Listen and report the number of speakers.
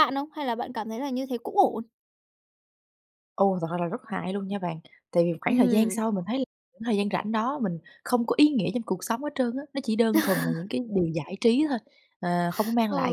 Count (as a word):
two